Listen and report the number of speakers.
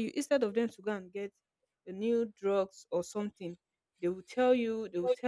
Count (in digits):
1